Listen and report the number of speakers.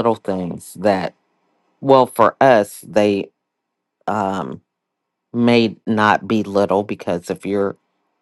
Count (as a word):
one